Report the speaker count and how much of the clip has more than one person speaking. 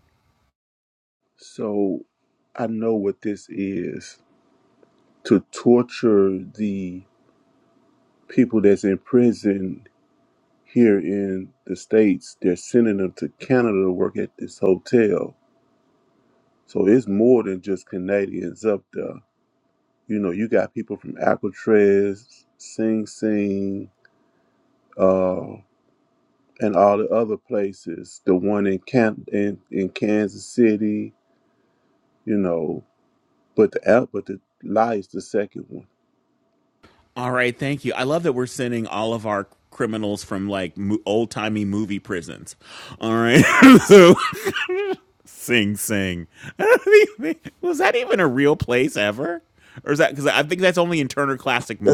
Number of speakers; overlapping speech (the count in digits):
2, under 1%